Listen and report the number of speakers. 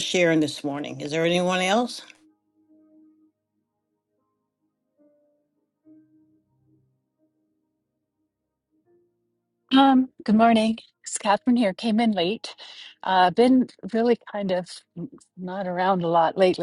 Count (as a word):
two